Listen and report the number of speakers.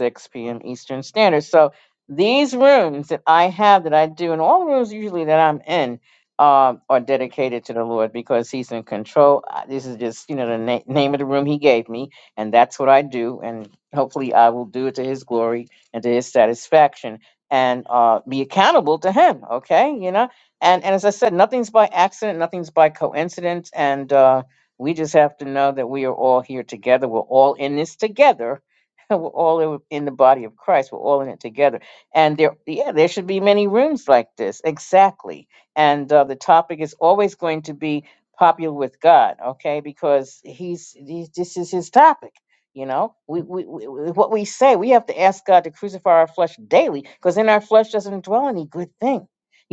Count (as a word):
one